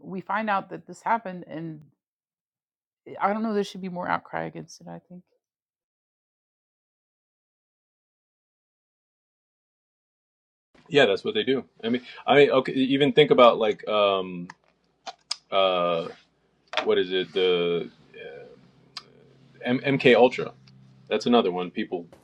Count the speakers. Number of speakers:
two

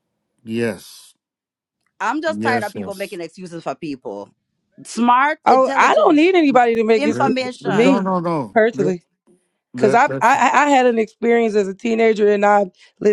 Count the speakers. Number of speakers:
three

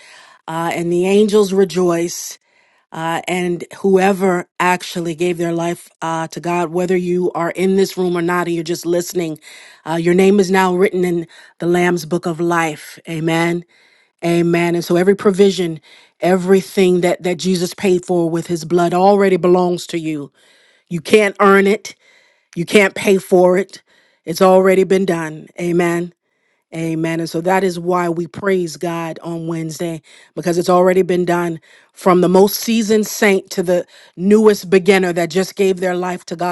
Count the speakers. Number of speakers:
one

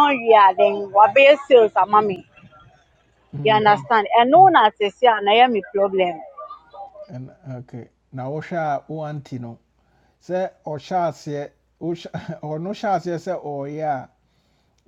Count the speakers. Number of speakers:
two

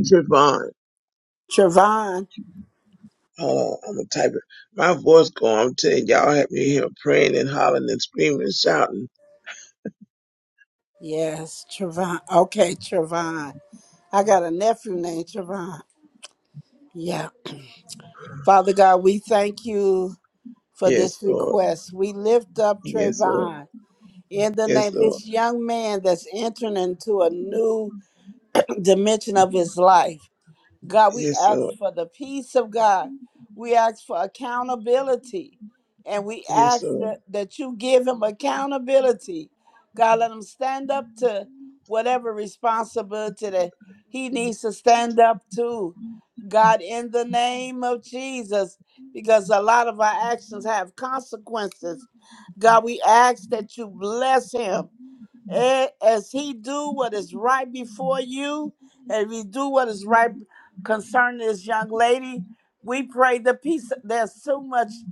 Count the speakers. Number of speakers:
two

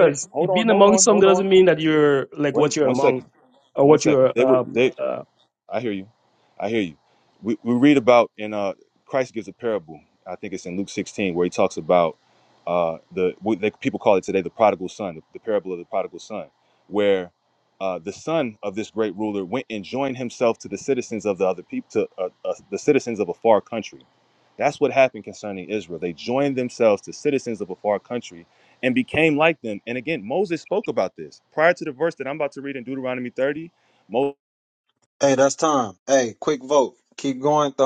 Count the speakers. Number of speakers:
three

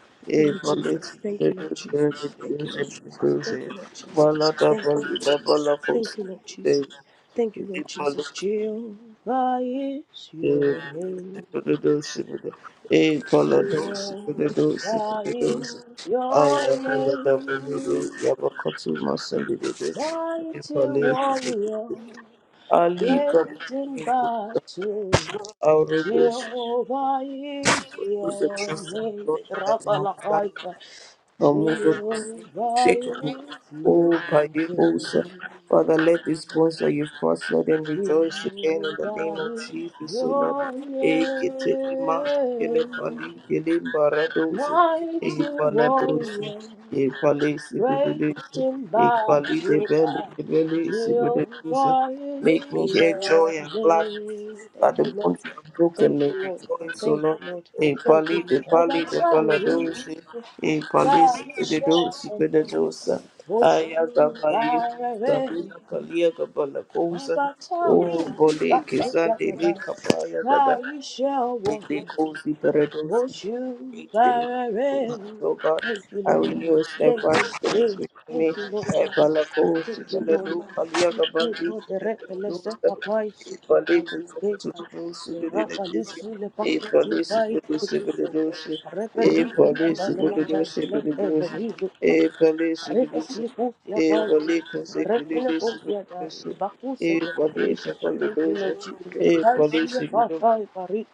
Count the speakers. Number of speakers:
two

